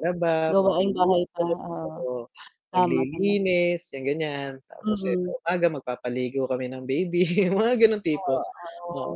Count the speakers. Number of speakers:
2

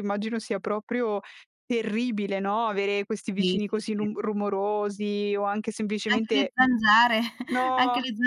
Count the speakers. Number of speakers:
2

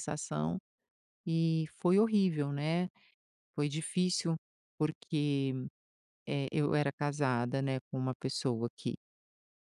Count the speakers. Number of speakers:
1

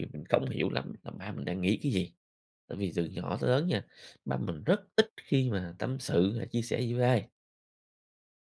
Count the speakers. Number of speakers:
1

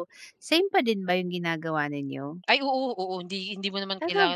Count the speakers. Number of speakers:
2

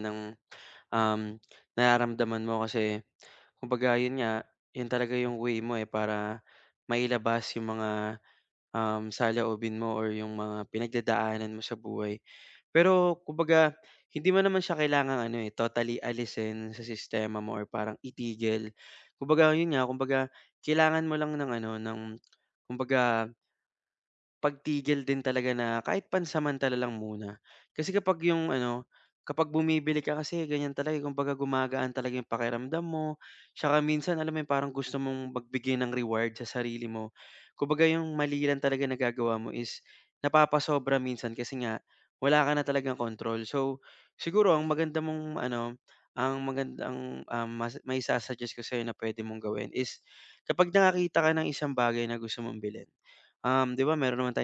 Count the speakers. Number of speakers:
1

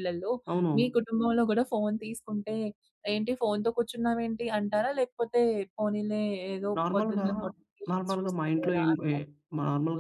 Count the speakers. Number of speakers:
2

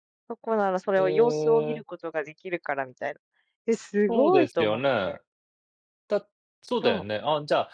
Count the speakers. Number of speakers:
2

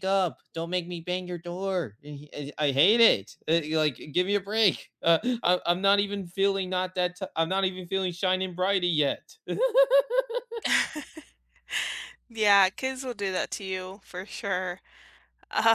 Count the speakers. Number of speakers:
2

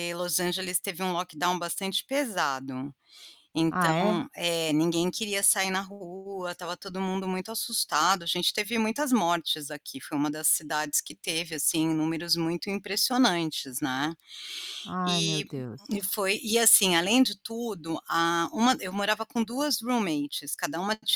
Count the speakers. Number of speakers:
2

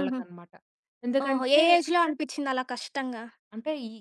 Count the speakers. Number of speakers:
2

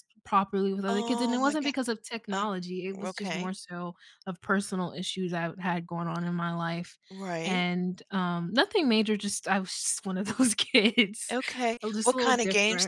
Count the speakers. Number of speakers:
2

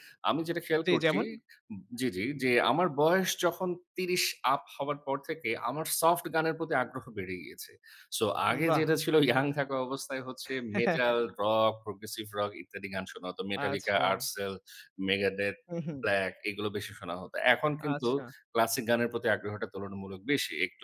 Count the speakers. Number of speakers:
2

